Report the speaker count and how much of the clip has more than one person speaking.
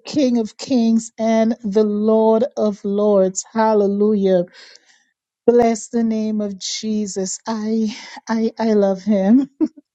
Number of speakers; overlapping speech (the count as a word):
one, no overlap